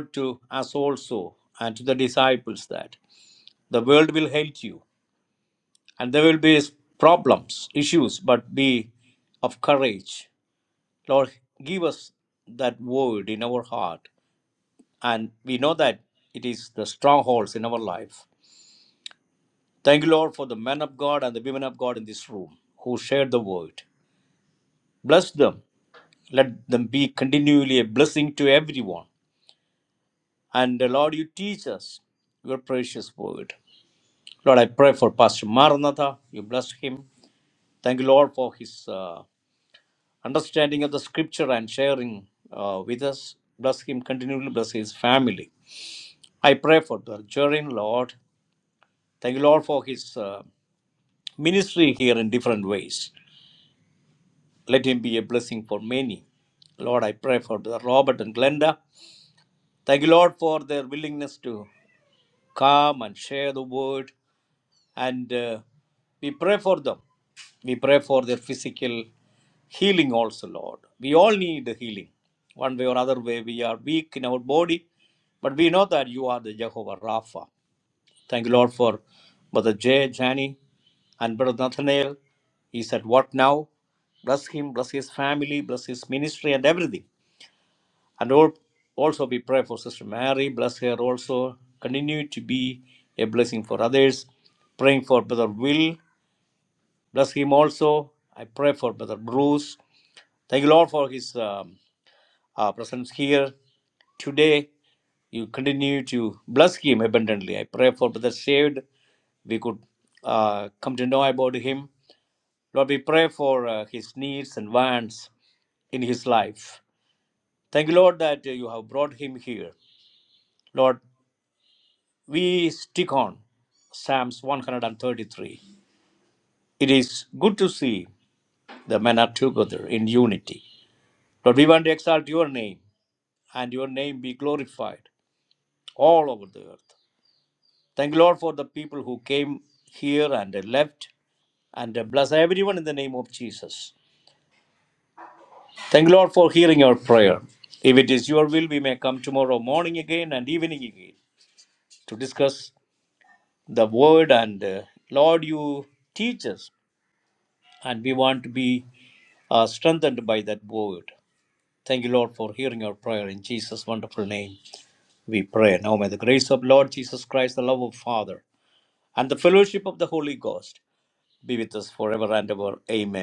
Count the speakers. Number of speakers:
1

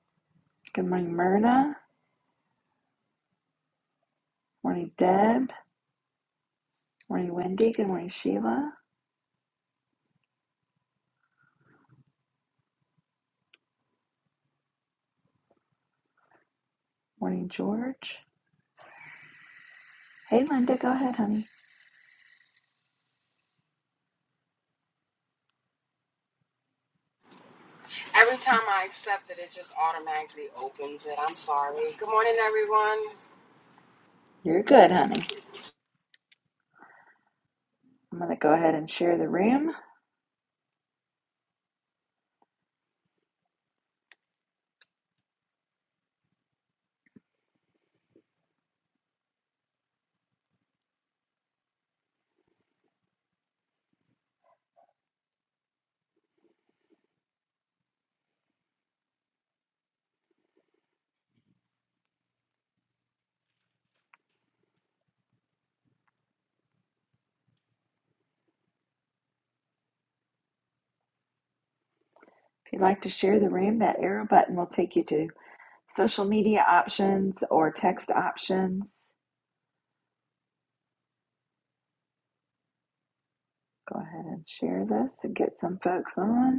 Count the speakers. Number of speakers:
2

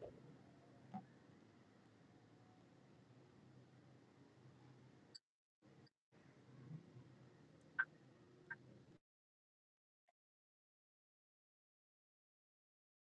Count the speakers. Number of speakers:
0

